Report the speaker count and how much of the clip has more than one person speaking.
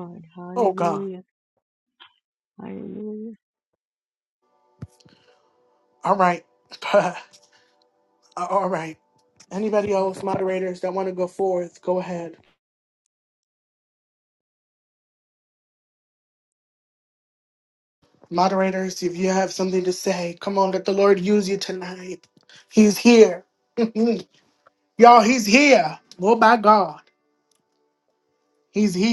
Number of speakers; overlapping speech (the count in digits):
2, about 2%